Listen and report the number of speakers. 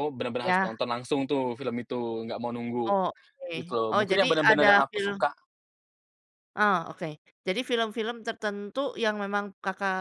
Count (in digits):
2